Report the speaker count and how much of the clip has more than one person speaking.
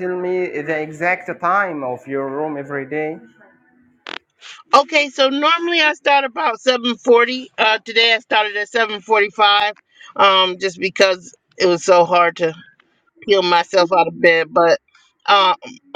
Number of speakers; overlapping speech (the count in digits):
2, no overlap